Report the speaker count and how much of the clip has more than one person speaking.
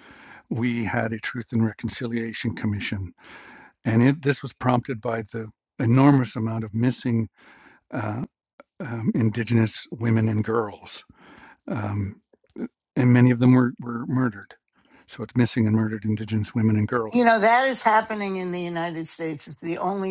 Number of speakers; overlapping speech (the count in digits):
2, about 1%